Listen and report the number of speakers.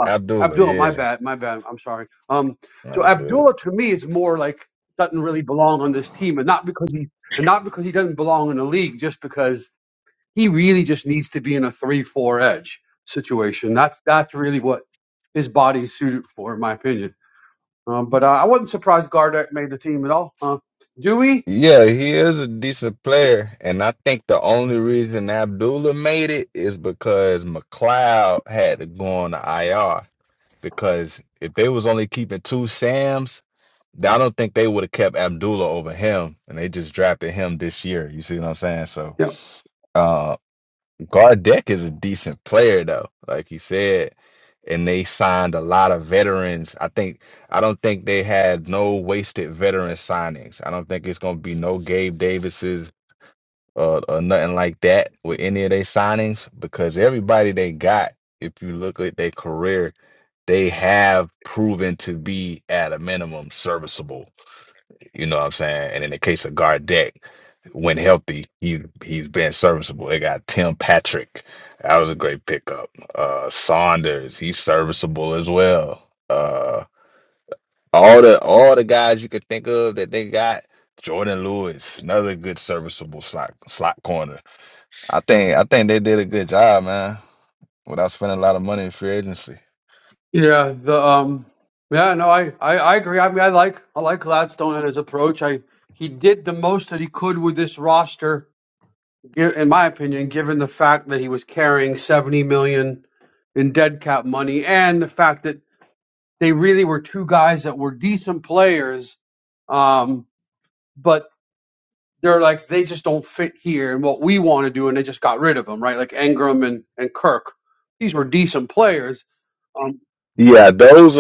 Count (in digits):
2